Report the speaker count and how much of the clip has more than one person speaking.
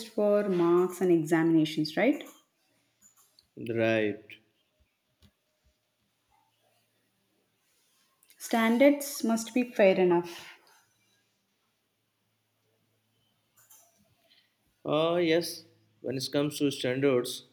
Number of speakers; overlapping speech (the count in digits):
2, no overlap